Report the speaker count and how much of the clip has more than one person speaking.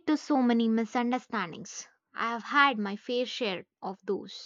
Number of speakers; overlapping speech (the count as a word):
one, no overlap